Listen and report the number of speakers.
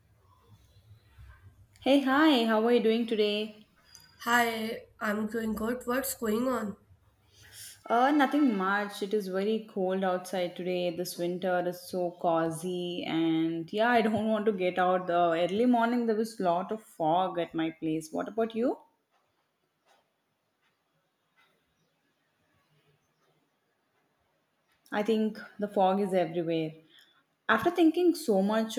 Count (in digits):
2